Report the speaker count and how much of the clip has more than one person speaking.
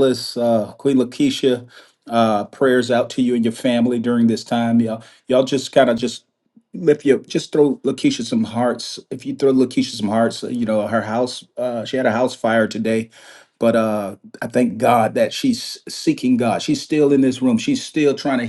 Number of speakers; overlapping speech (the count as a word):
one, no overlap